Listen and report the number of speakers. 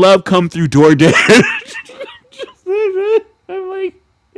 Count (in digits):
1